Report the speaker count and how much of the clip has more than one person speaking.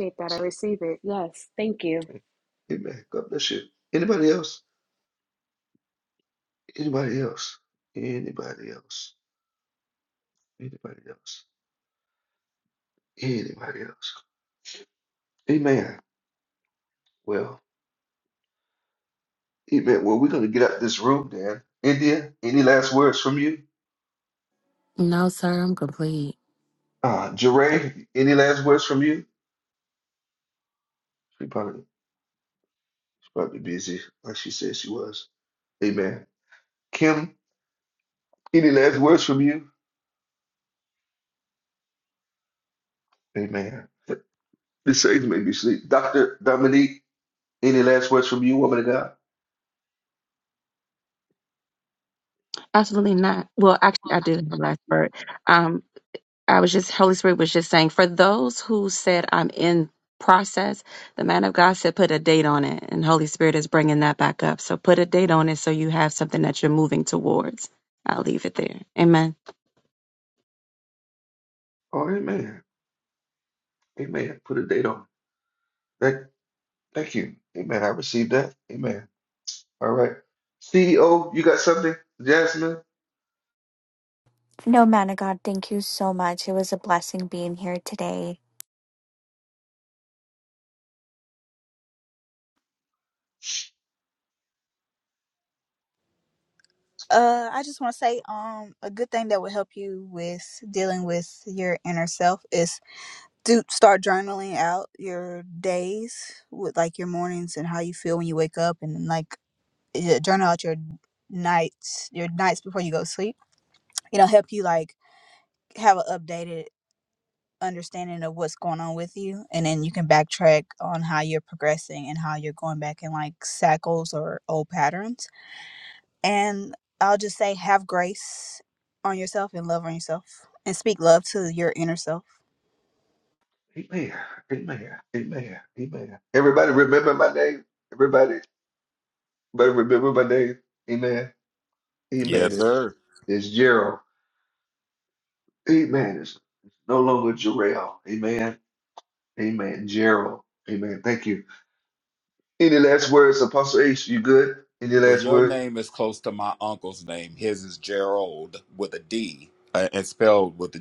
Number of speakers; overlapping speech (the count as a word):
seven, about 1%